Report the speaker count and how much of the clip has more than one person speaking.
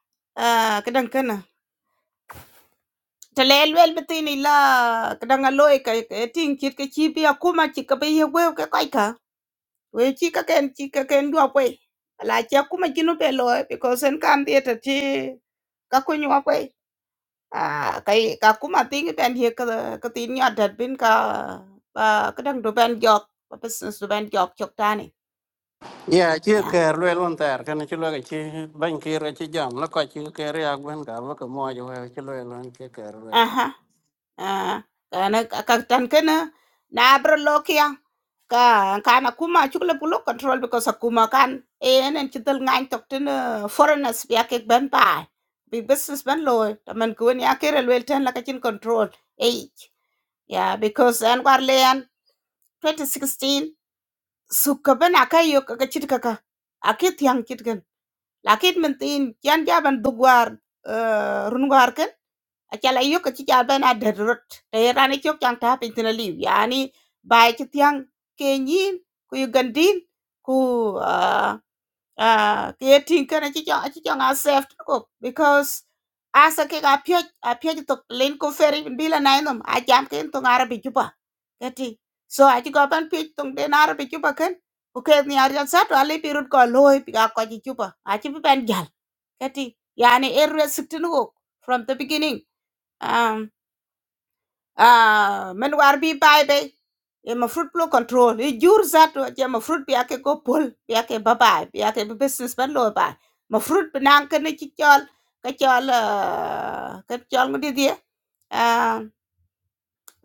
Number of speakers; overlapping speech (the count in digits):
2, no overlap